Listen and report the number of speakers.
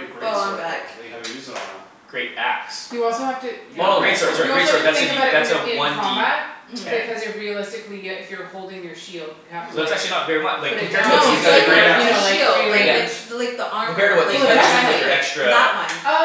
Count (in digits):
4